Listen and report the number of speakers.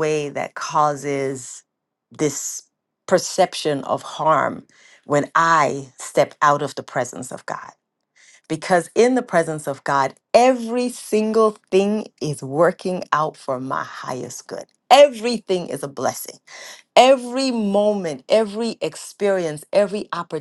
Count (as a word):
one